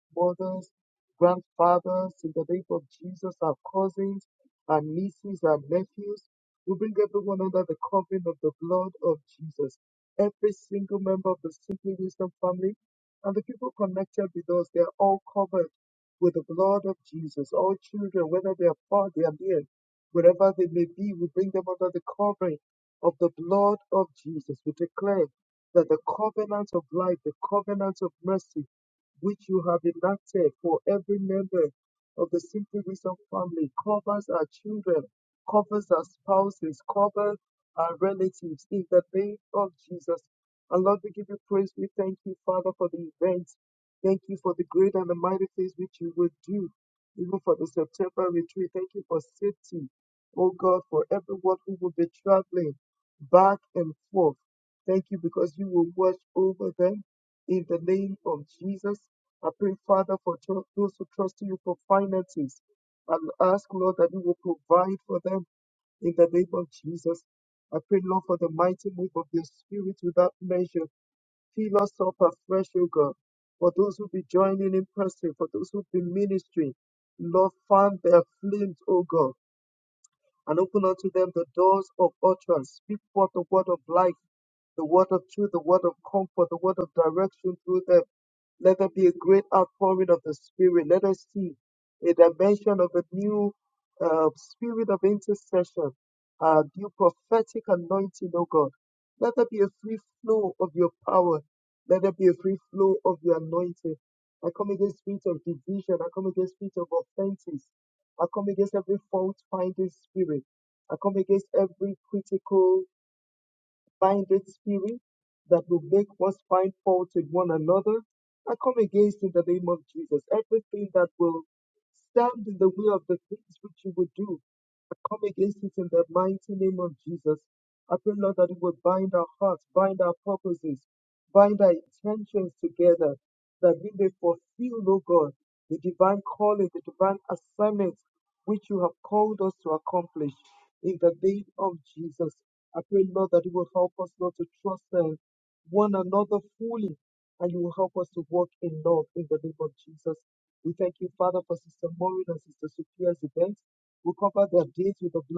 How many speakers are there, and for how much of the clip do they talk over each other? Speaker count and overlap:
one, no overlap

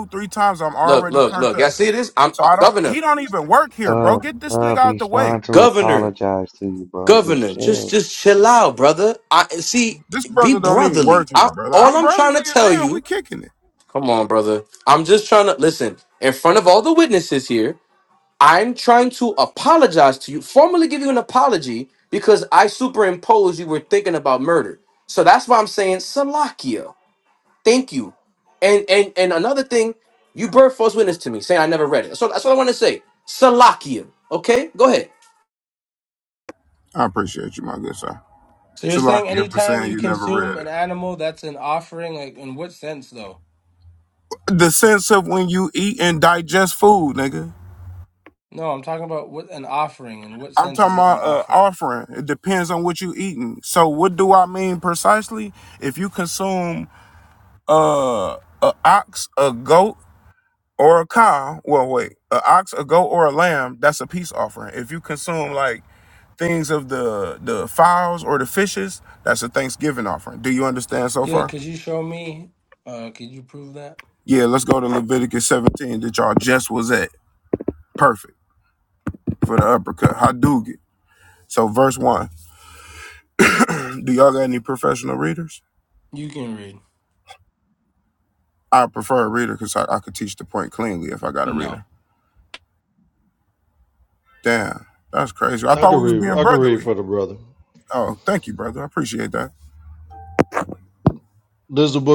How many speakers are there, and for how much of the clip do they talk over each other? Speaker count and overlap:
five, about 11%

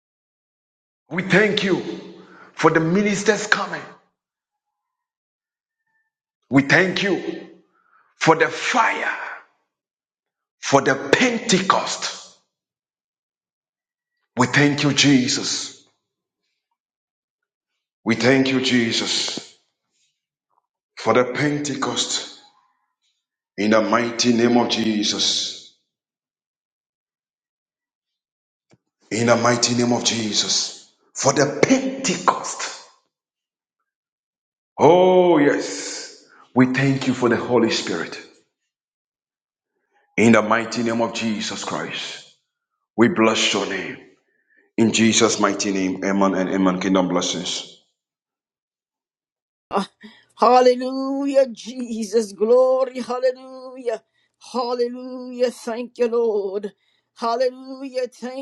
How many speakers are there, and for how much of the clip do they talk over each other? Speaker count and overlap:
two, no overlap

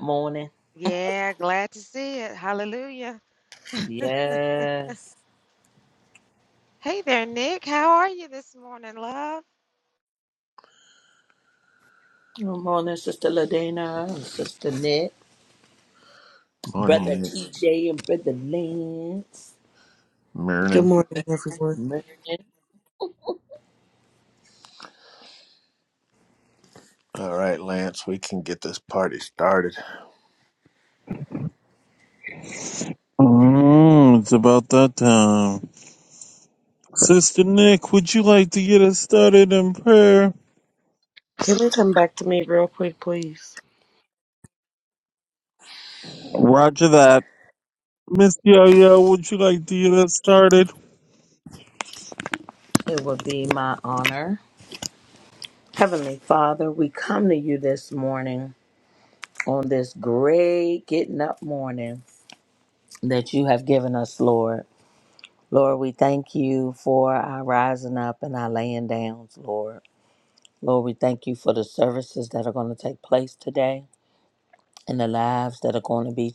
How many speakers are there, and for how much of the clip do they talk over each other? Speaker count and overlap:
five, about 1%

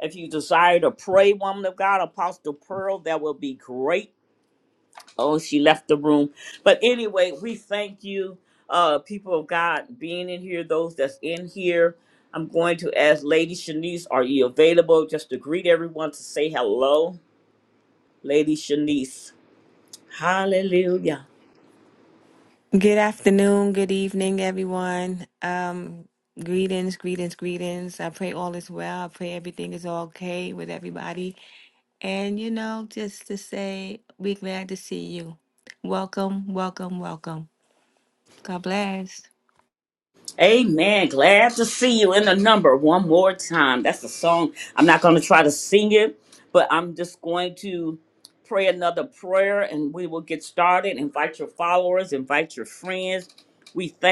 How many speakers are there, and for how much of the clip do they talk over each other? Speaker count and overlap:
two, no overlap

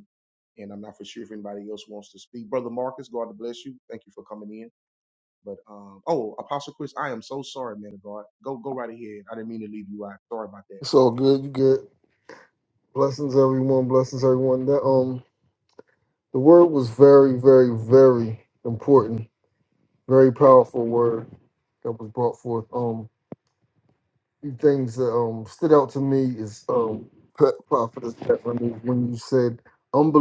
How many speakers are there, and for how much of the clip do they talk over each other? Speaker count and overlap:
two, no overlap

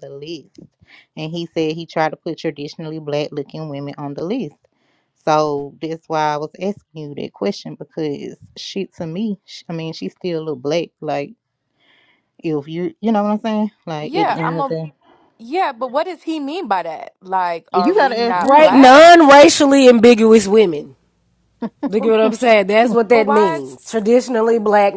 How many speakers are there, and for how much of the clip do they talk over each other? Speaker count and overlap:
three, about 10%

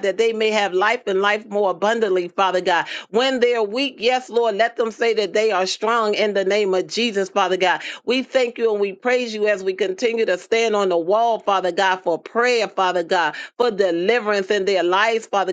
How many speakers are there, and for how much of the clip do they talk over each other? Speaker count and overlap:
one, no overlap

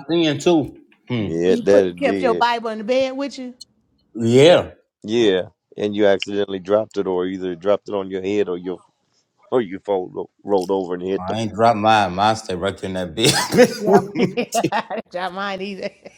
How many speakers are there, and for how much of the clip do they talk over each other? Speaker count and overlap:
three, about 12%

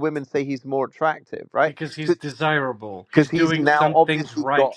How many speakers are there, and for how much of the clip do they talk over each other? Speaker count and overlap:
two, about 38%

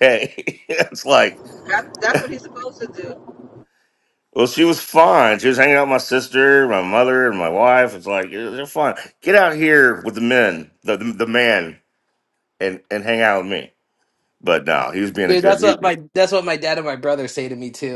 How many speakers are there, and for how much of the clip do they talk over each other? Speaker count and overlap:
three, about 3%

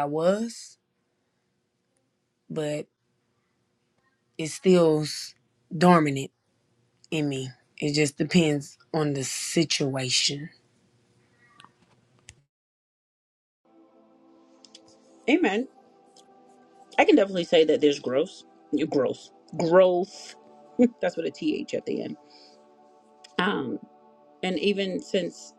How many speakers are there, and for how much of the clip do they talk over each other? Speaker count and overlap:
two, no overlap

